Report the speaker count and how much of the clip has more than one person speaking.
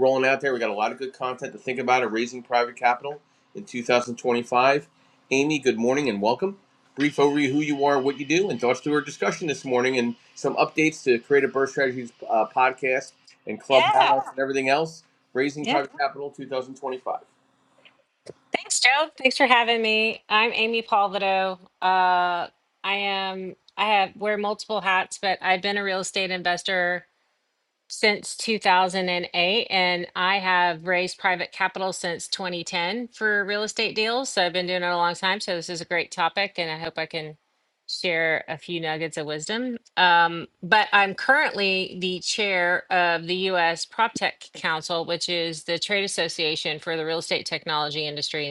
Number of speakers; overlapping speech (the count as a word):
two, about 1%